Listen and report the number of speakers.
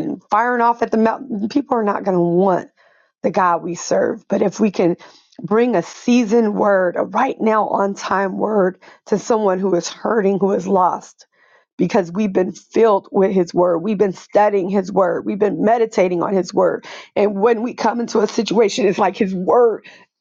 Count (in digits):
1